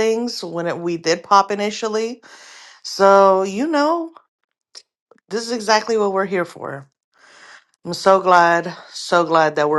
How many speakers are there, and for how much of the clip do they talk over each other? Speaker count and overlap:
one, no overlap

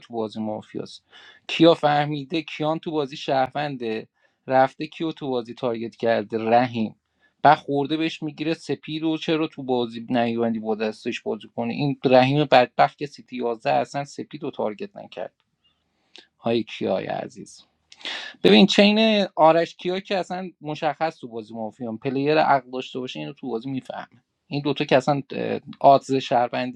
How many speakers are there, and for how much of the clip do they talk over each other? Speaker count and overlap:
one, no overlap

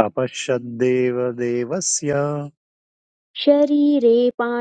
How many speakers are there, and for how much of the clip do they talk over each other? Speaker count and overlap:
two, no overlap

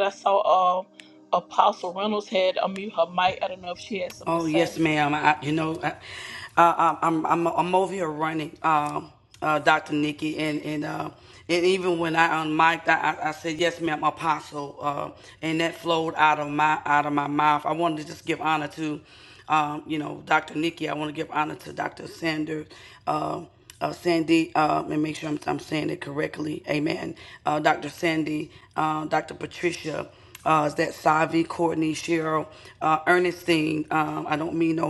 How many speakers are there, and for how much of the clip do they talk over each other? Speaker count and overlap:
two, about 1%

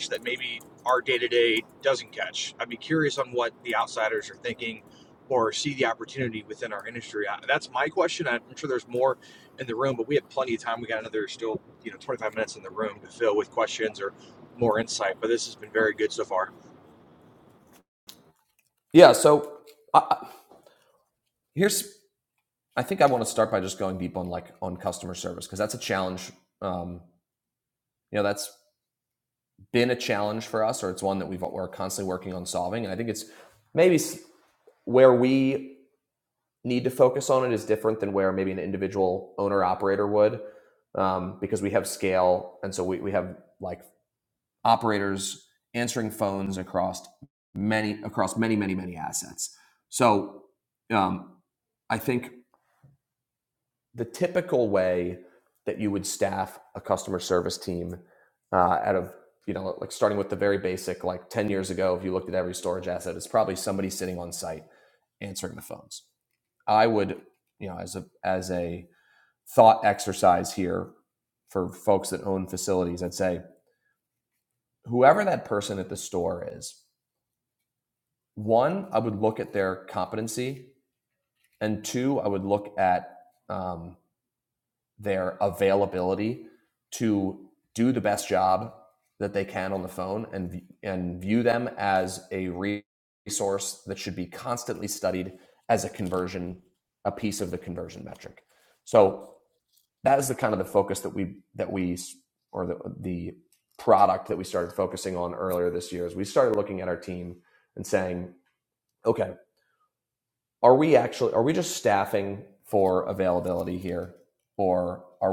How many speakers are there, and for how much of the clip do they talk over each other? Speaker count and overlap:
two, no overlap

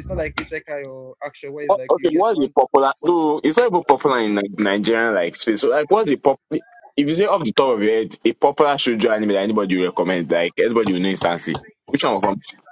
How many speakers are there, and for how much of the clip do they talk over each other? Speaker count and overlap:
two, about 7%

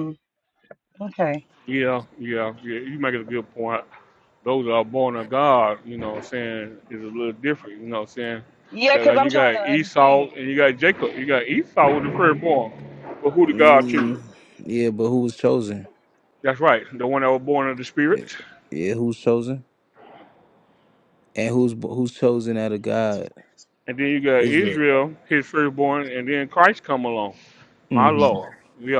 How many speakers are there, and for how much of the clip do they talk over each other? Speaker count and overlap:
three, about 10%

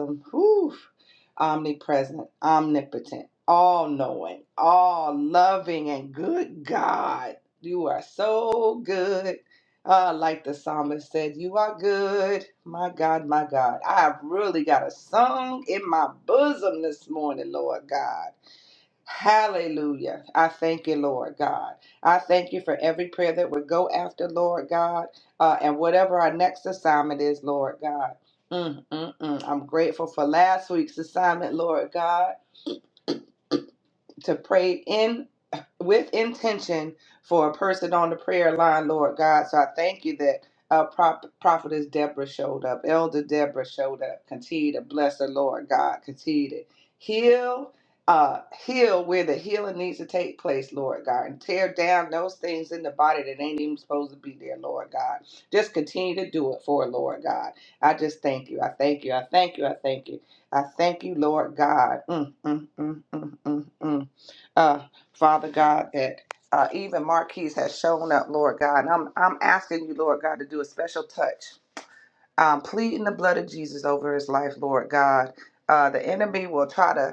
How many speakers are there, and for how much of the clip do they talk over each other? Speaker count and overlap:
one, no overlap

